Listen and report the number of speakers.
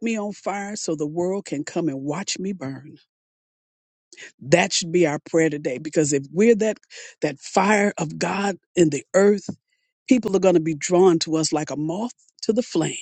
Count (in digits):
1